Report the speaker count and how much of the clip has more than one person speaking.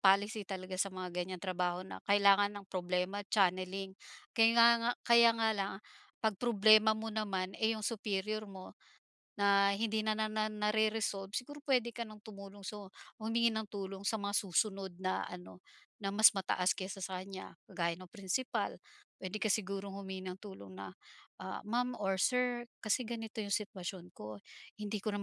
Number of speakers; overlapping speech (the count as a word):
one, no overlap